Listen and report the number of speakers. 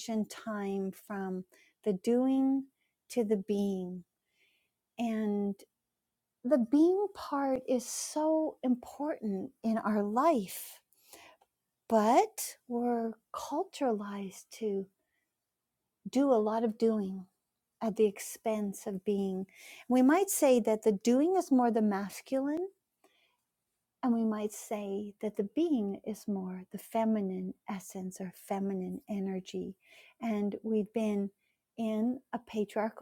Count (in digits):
1